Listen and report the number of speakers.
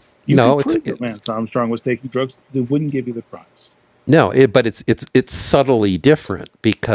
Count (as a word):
two